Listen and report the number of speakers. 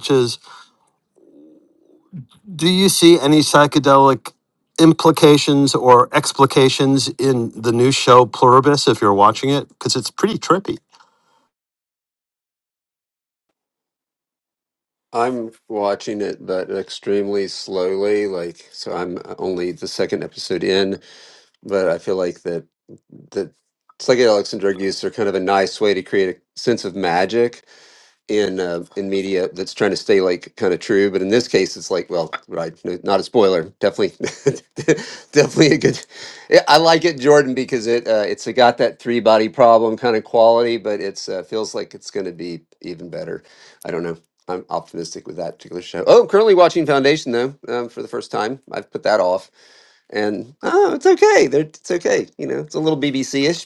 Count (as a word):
two